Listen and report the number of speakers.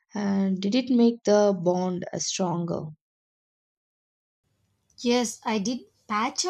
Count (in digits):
2